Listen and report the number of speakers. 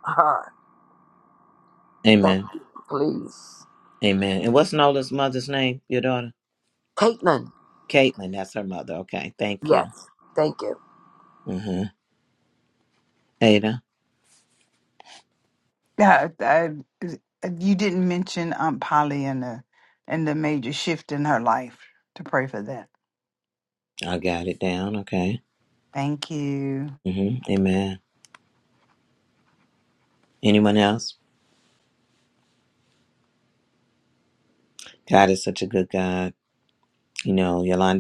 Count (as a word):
three